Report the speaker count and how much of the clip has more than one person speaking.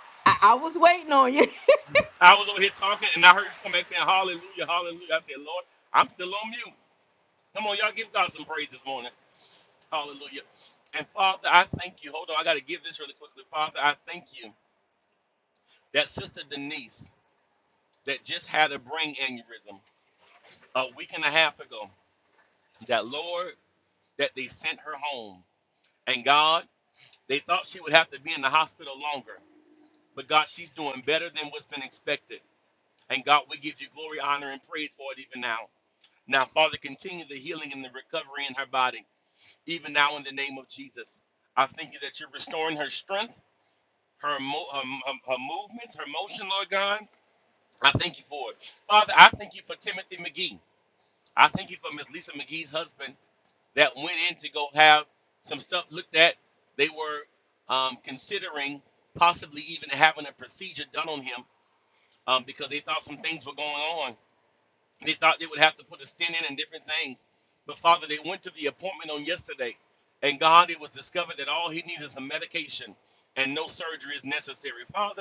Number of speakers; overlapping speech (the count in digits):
2, no overlap